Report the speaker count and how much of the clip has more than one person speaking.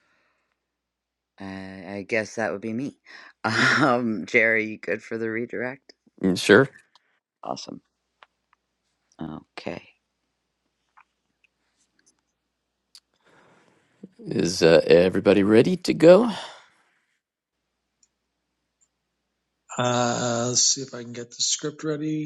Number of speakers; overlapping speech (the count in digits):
3, no overlap